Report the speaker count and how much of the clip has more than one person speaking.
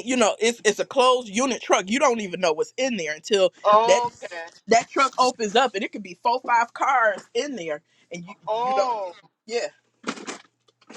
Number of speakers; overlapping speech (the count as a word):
two, about 4%